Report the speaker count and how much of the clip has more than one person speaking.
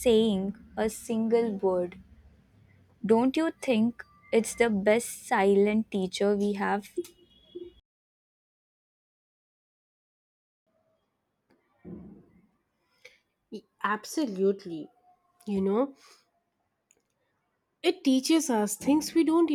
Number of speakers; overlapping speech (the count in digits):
2, no overlap